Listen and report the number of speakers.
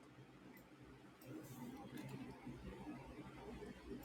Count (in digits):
0